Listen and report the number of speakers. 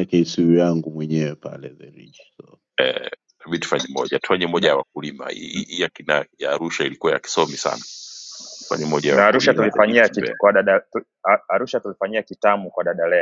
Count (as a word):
three